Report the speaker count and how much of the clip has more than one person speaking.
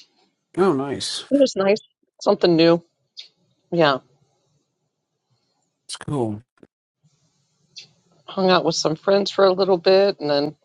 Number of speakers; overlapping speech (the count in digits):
2, no overlap